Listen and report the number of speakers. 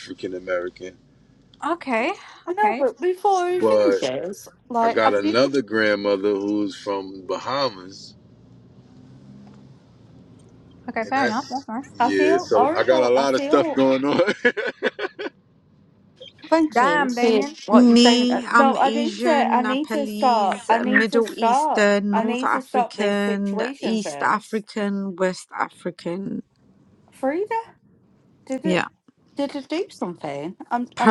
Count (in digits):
4